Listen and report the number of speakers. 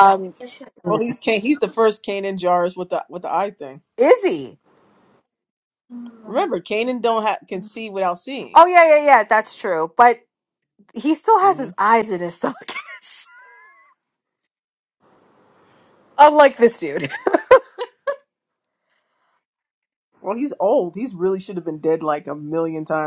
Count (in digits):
2